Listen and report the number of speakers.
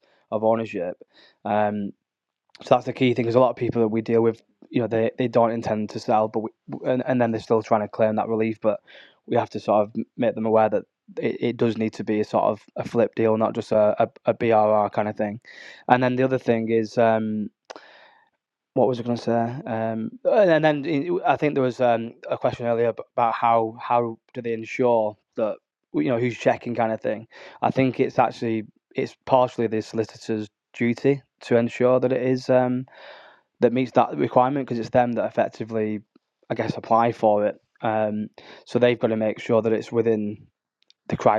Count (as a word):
one